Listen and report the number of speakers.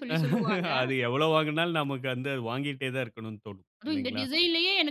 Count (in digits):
2